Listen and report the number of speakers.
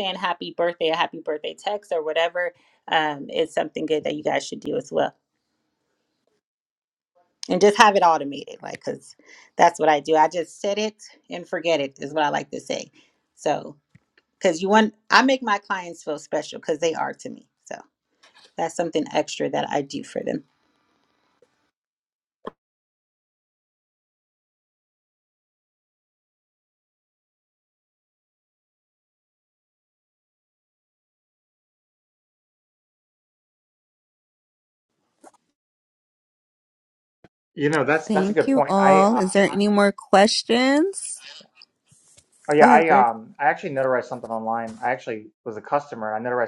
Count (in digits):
3